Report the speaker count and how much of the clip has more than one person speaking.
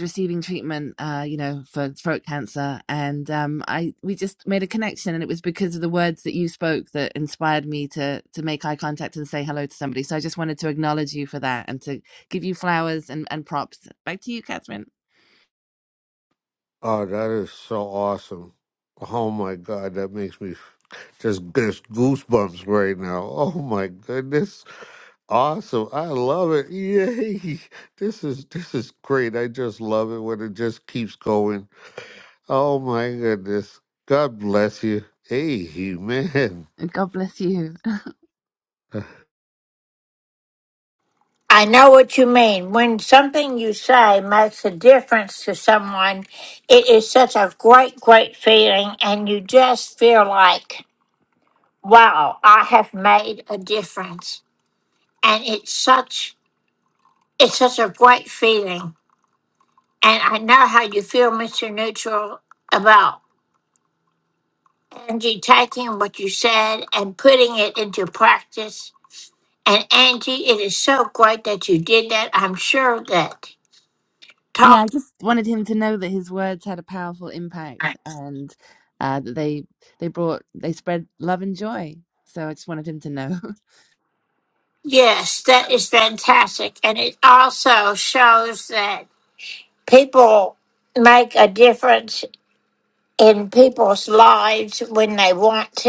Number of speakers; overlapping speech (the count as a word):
three, under 1%